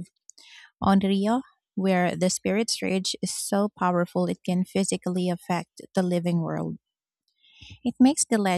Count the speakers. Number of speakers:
1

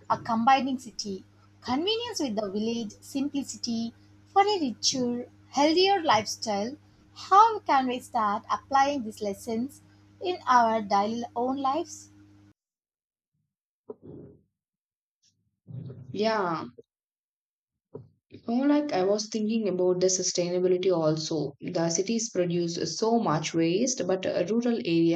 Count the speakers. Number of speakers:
2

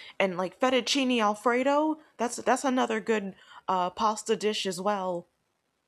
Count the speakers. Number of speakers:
1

